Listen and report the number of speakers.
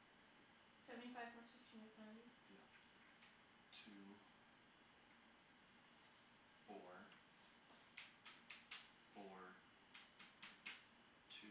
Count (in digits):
2